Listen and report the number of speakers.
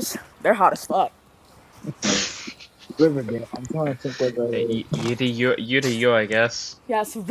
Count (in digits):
3